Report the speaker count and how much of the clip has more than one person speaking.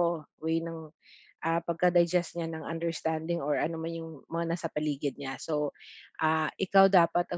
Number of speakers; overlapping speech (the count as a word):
one, no overlap